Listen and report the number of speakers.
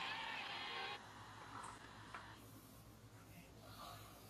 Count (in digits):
0